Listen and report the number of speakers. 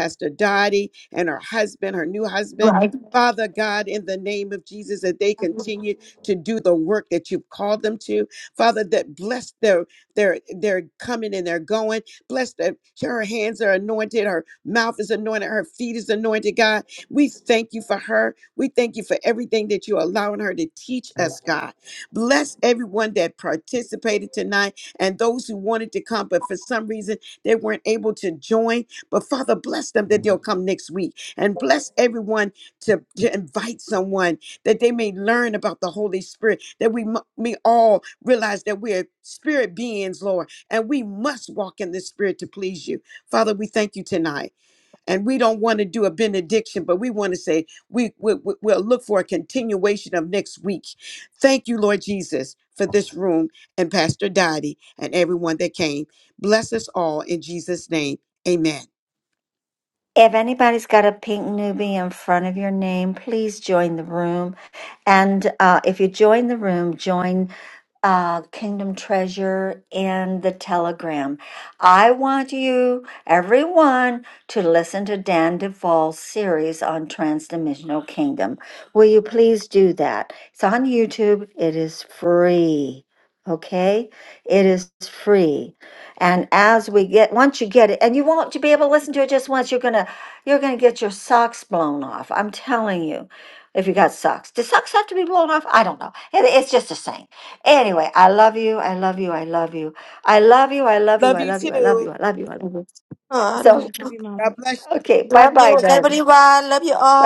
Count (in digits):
3